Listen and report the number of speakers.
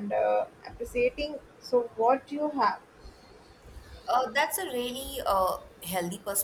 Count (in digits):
2